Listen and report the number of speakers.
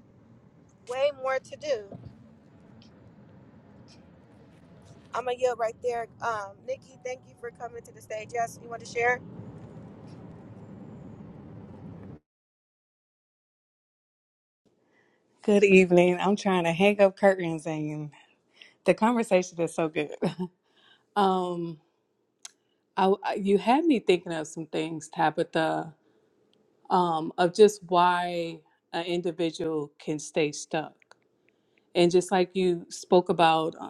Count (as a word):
two